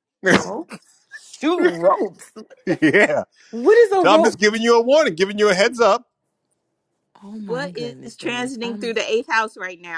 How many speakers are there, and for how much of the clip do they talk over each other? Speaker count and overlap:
three, about 19%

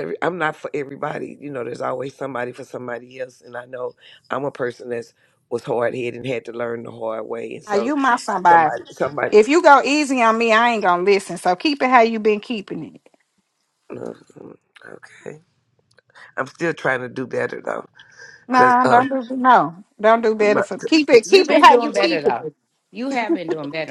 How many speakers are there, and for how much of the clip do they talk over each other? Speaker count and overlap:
three, about 11%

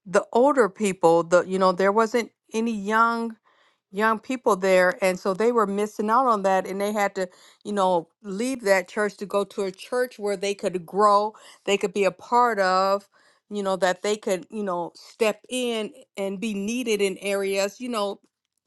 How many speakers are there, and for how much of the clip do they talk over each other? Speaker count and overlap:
one, no overlap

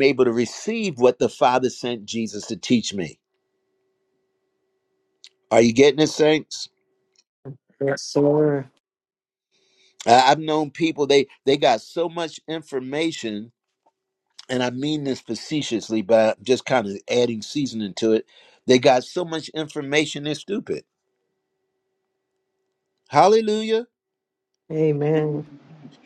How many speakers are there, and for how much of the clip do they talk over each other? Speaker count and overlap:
two, no overlap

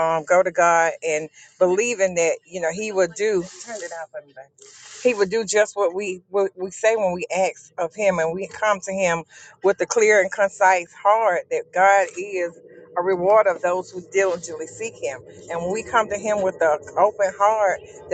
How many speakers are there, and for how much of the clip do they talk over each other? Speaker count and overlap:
one, no overlap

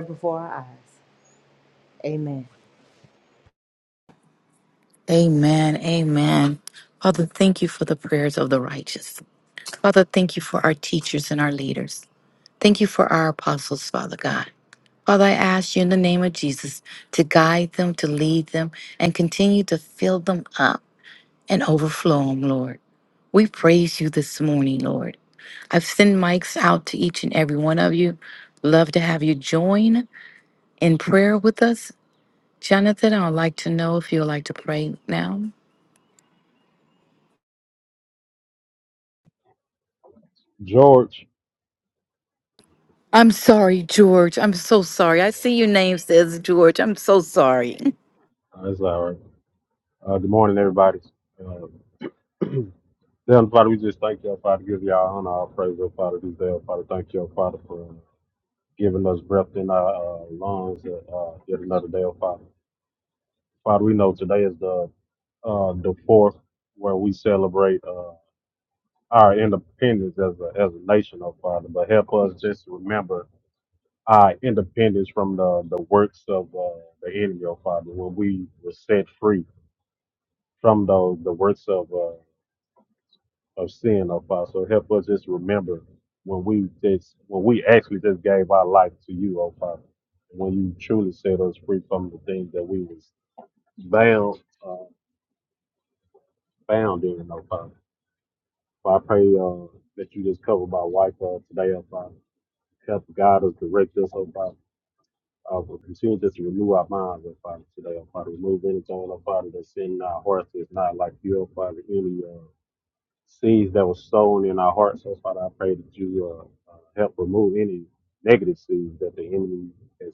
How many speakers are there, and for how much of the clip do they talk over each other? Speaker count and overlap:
three, no overlap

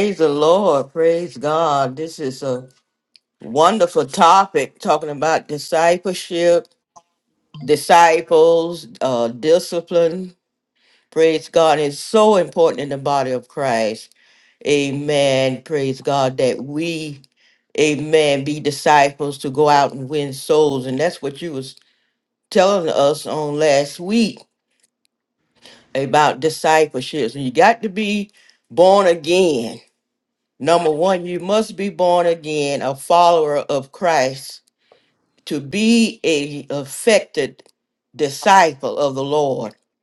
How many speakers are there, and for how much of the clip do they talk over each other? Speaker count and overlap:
one, no overlap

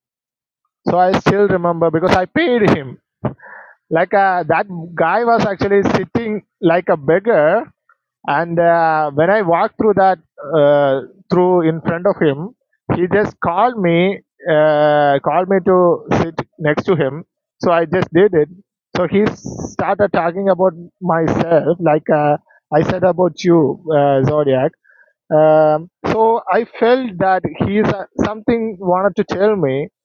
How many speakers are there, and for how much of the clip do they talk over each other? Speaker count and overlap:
one, no overlap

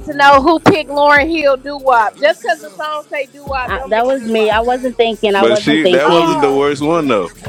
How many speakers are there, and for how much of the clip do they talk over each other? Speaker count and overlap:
three, about 26%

